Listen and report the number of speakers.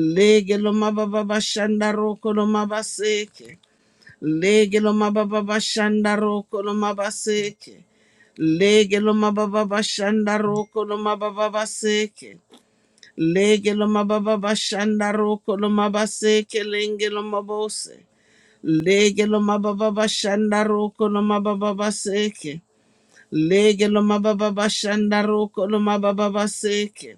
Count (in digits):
1